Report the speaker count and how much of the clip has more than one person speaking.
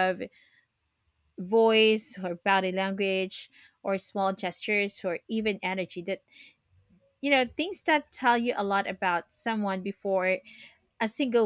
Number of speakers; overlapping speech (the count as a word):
one, no overlap